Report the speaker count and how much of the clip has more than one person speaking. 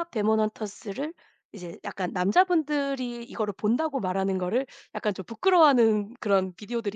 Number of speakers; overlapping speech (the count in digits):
1, no overlap